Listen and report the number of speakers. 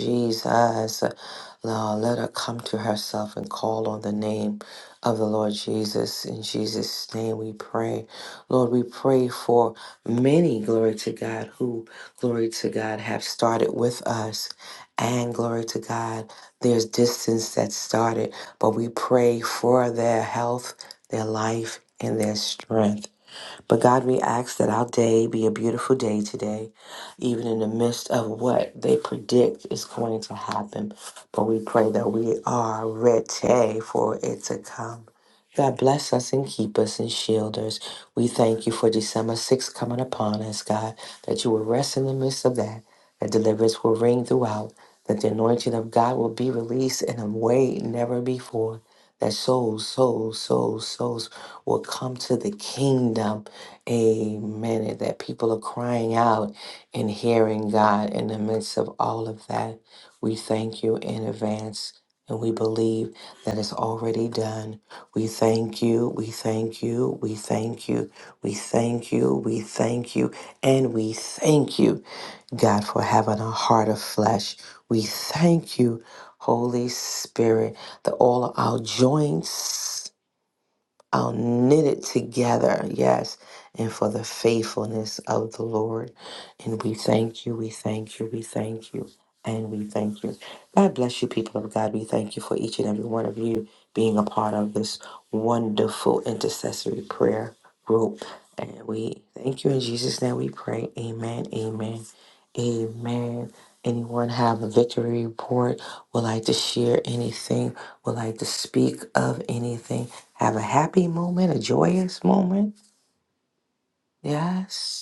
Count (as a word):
one